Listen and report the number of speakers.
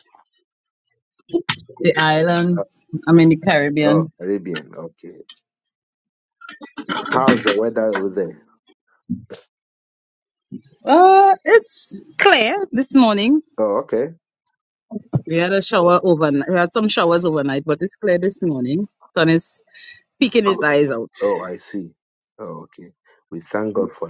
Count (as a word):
two